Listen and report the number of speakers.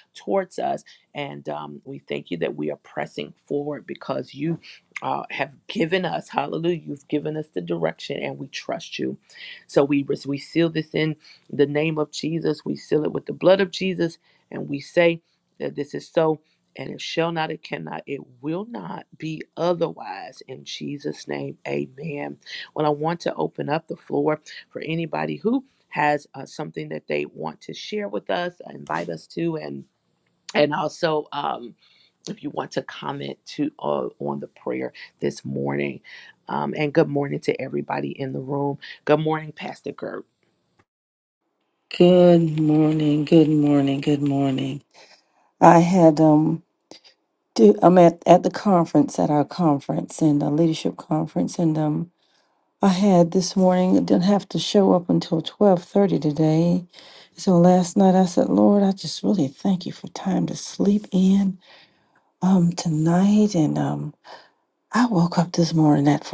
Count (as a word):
two